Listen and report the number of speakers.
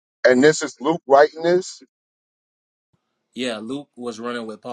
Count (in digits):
2